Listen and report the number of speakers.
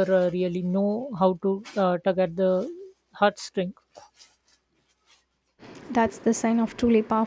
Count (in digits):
2